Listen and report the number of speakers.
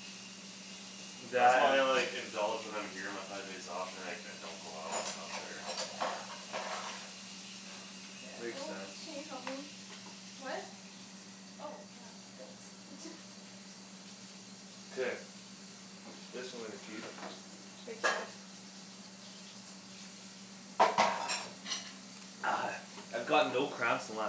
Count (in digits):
4